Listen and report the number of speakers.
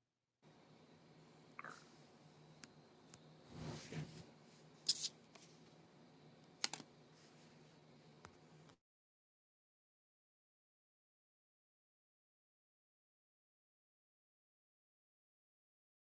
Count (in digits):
0